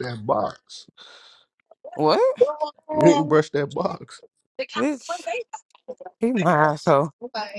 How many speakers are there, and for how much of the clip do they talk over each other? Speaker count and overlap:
3, about 17%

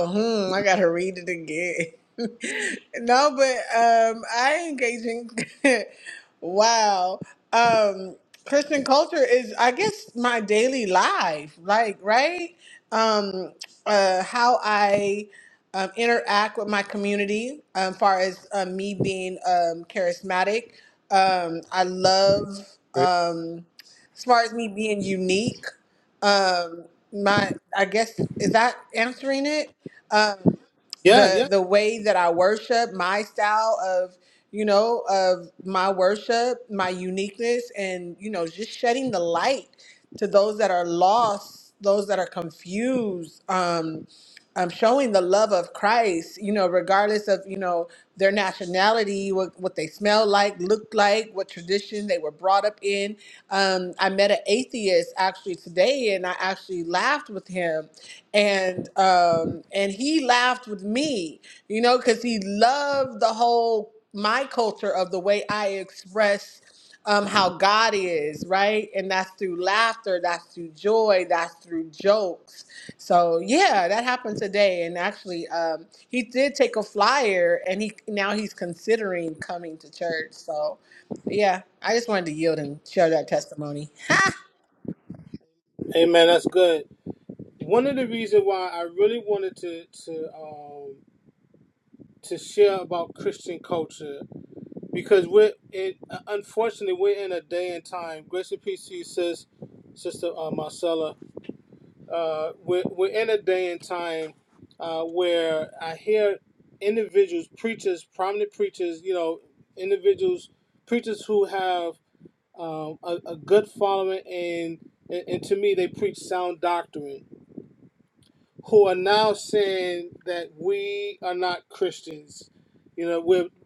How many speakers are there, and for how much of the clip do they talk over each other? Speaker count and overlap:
2, under 1%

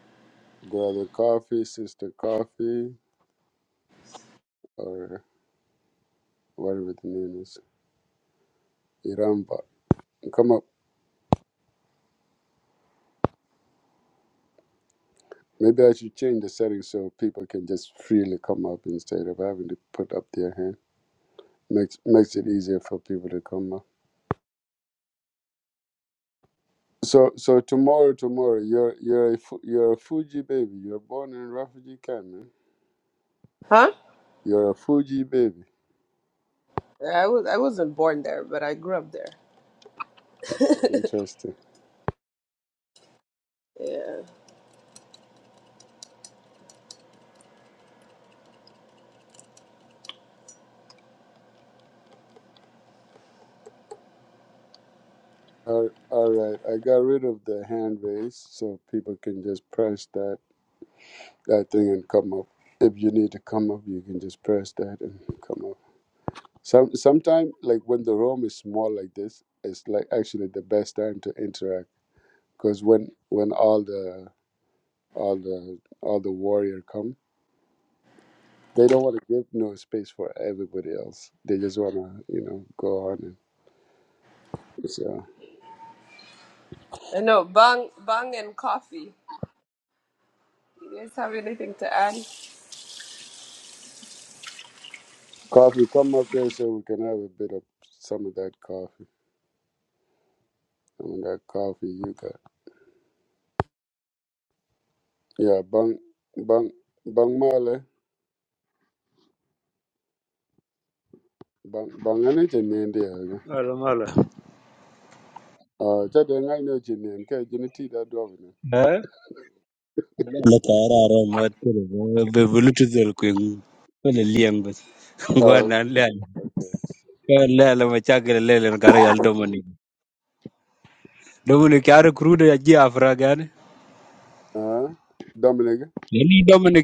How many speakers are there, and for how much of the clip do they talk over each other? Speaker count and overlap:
3, under 1%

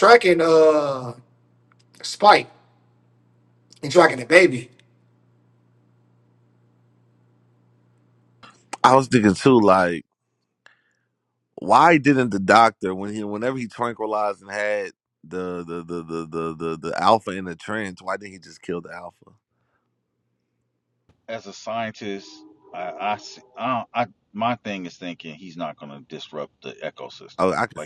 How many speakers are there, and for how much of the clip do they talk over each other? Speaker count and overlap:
3, about 2%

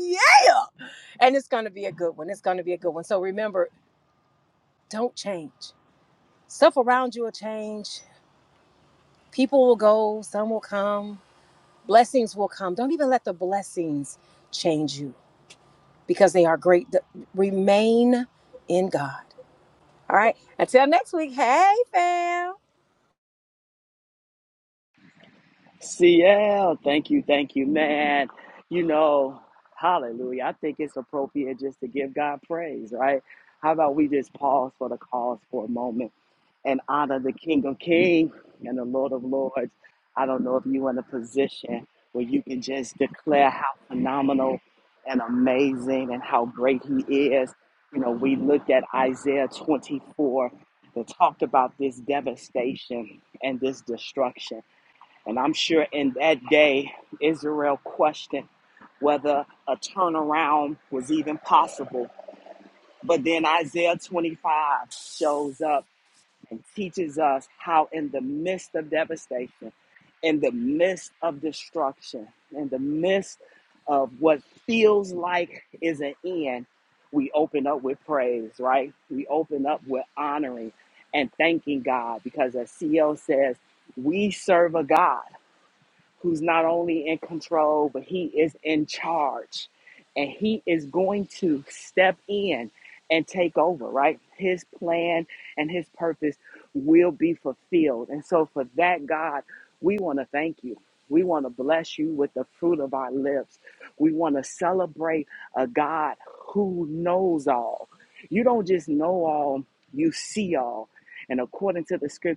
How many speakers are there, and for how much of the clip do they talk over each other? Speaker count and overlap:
2, no overlap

